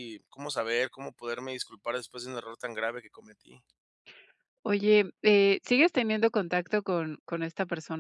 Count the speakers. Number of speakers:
2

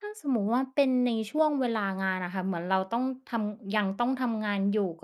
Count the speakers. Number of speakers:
1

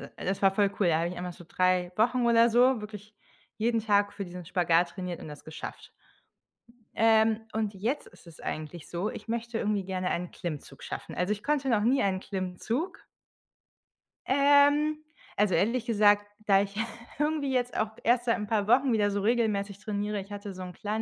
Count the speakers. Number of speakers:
1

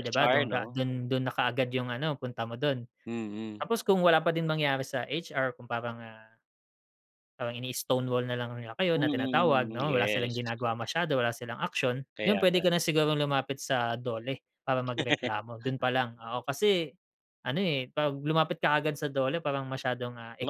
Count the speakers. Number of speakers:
2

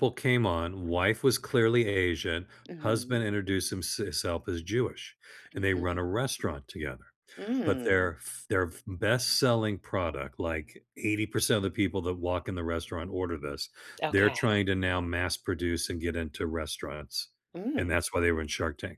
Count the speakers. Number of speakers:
2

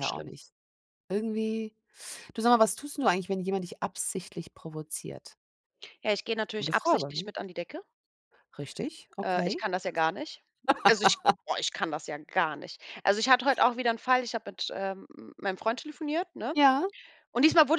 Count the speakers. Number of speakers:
2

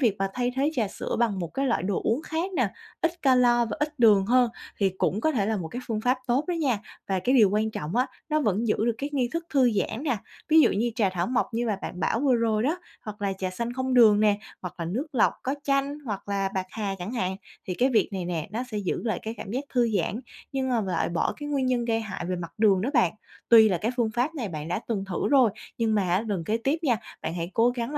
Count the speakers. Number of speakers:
1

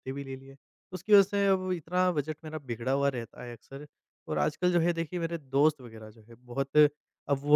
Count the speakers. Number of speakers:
1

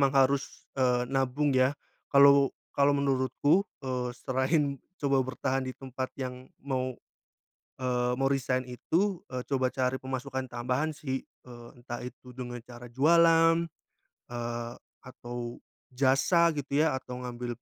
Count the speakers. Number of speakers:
1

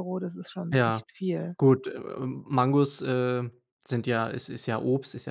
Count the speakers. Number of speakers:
2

